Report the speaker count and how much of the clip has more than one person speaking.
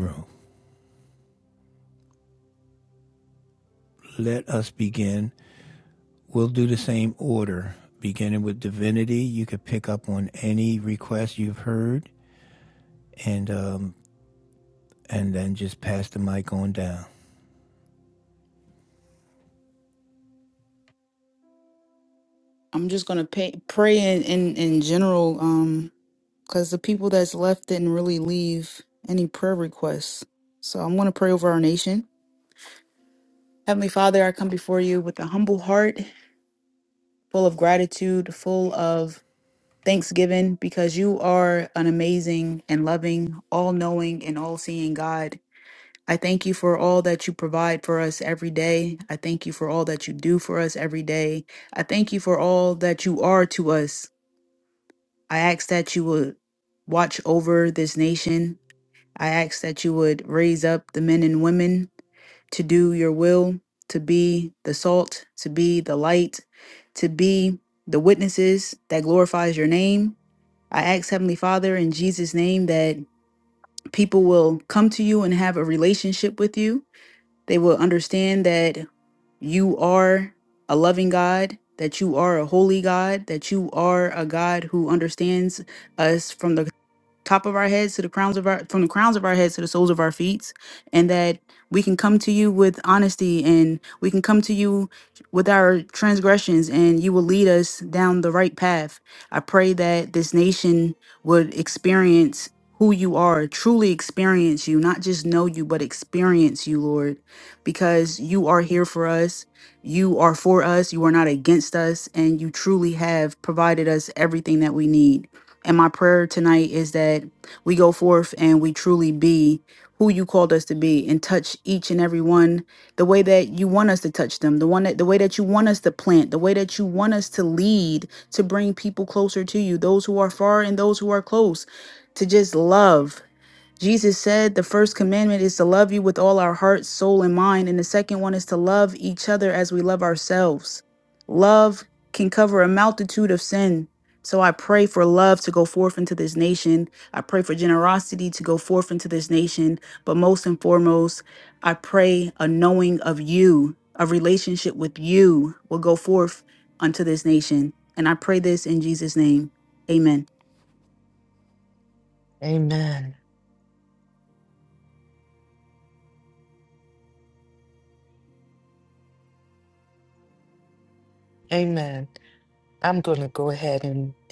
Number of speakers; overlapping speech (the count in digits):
3, no overlap